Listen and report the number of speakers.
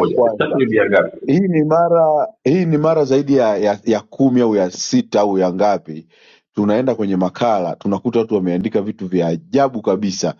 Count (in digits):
2